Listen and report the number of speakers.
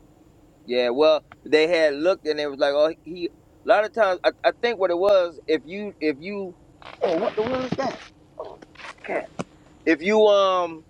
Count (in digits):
1